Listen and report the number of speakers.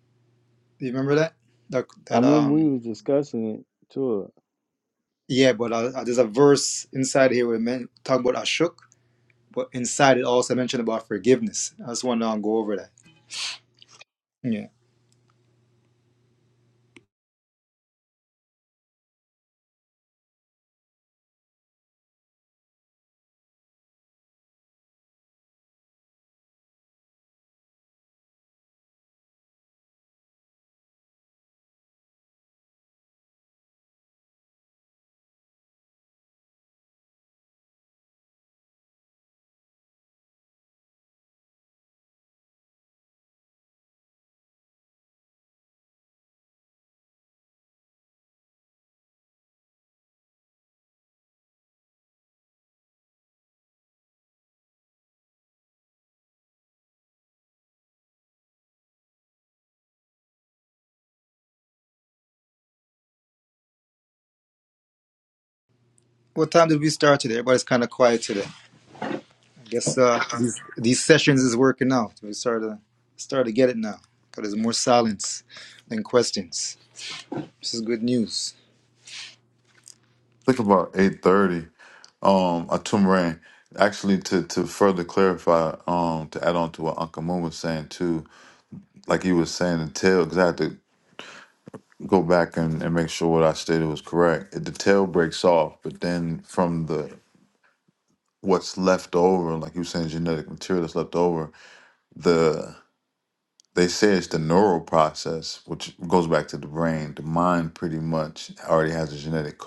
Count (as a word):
three